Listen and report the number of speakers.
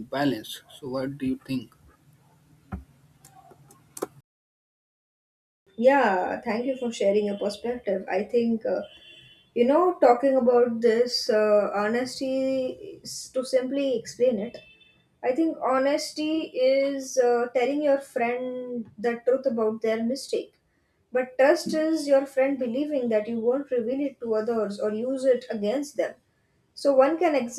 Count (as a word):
two